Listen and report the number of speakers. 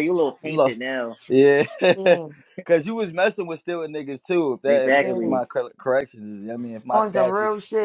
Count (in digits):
3